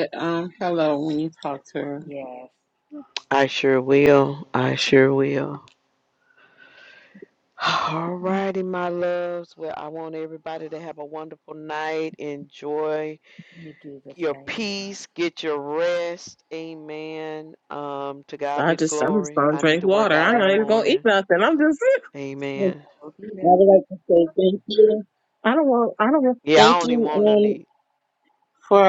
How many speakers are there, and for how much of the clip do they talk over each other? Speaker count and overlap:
four, about 14%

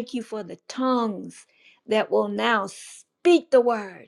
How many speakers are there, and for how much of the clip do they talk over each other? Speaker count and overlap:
one, no overlap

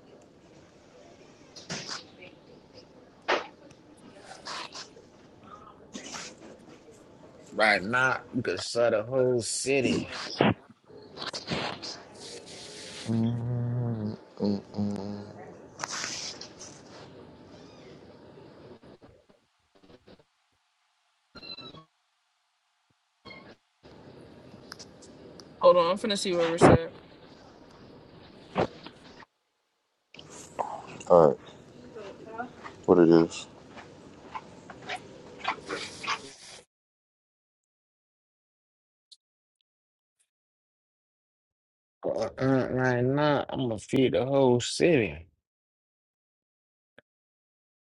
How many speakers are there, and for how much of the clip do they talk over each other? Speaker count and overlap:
three, no overlap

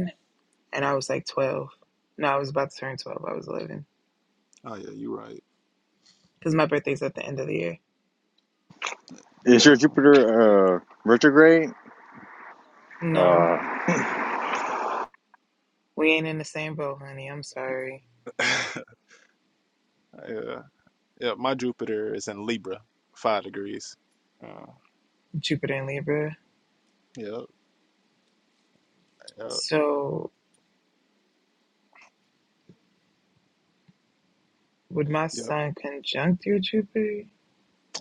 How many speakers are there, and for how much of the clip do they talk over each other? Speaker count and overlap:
three, about 3%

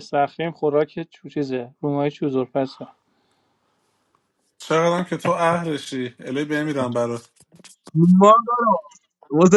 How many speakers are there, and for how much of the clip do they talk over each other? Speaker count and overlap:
three, no overlap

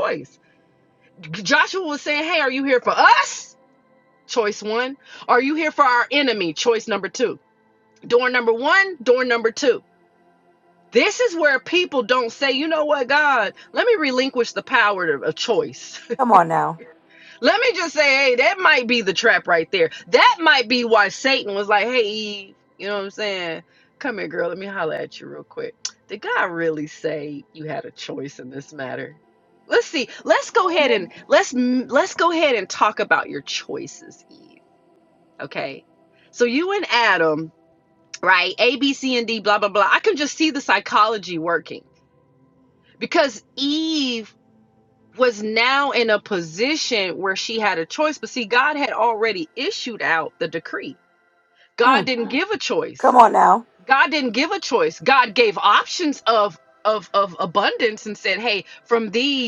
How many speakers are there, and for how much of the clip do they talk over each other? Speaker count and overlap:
two, under 1%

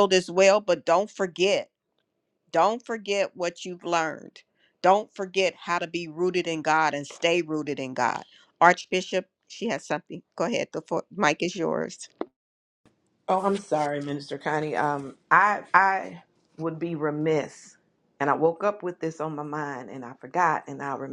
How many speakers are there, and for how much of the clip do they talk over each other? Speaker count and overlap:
two, no overlap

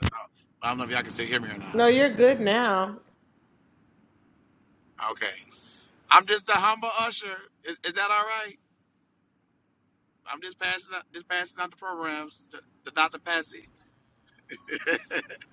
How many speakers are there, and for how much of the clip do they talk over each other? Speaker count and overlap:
two, about 1%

